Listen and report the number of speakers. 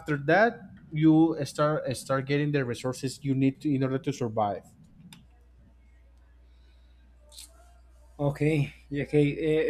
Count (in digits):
2